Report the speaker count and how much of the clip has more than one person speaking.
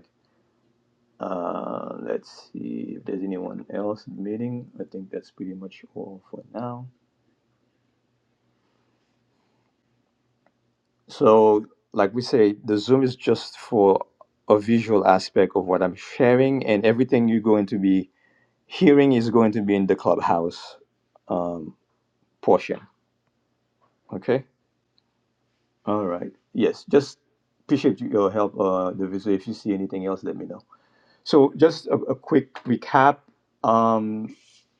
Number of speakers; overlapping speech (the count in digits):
1, no overlap